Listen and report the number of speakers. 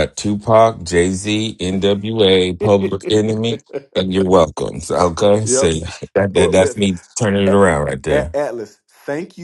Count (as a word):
two